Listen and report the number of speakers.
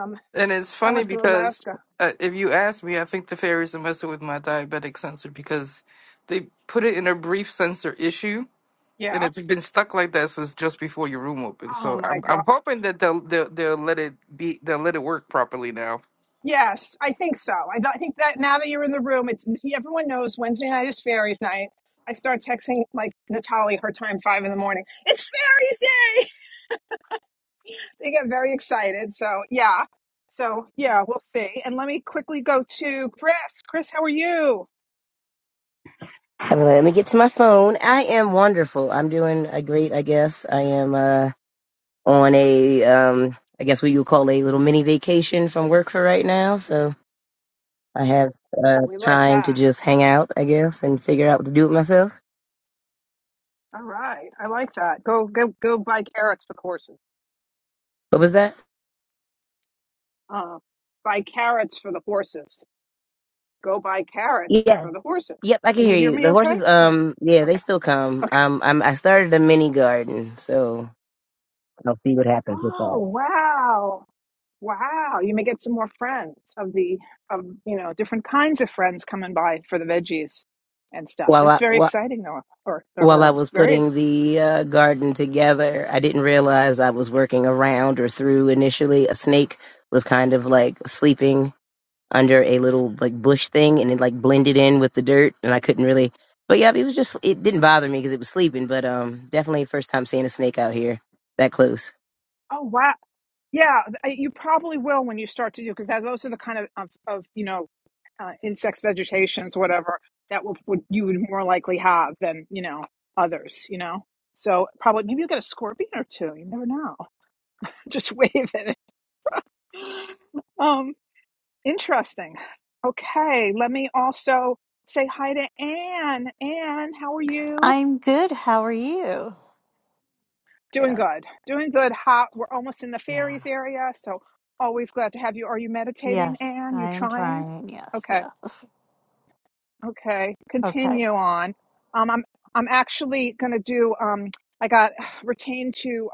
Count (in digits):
4